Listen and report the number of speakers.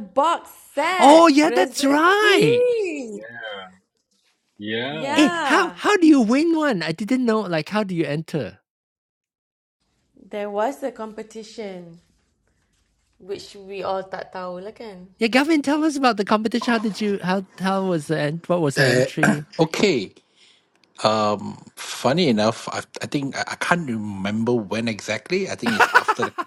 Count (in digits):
4